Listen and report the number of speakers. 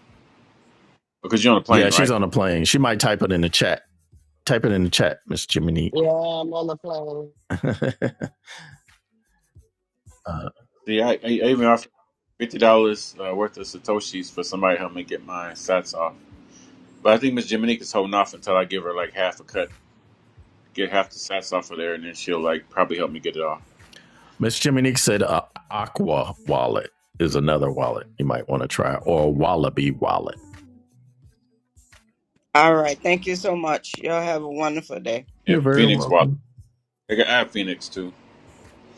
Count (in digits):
4